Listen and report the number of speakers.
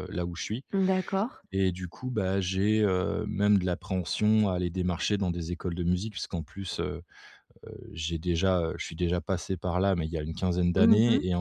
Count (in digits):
2